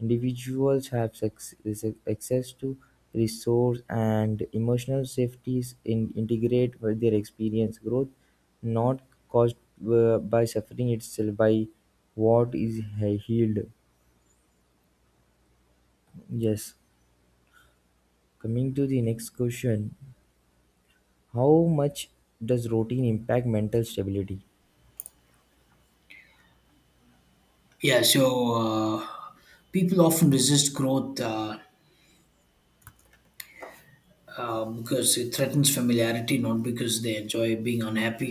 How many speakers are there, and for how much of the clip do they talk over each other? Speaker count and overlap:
two, no overlap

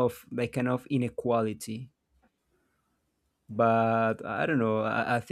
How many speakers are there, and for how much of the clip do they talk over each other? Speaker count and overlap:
one, no overlap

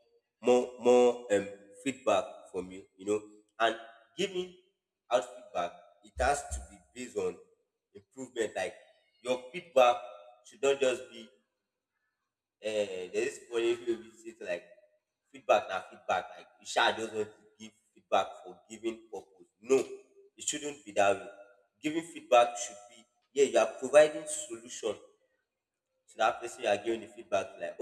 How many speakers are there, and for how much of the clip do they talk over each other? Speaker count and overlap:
one, no overlap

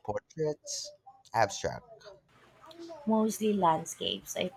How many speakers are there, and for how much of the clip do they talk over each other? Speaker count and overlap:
two, no overlap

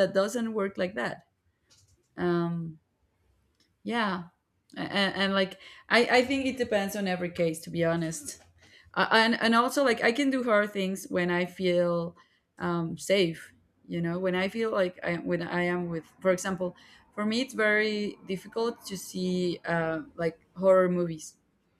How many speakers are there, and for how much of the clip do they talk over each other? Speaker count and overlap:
one, no overlap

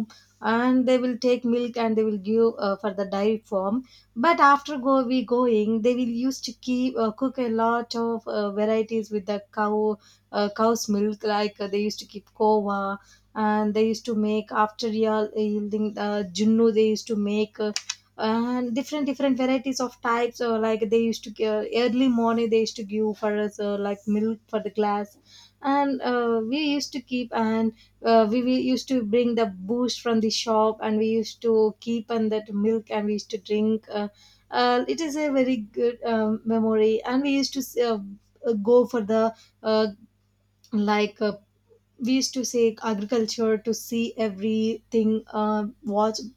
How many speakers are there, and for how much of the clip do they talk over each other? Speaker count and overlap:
one, no overlap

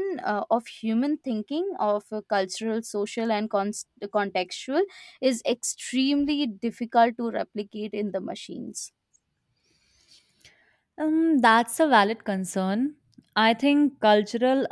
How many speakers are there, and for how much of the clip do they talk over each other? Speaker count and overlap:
two, no overlap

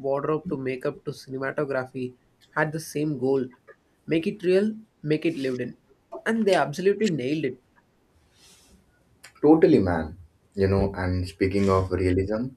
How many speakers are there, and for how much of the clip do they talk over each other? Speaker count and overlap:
two, no overlap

